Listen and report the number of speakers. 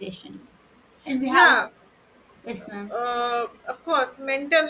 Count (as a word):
two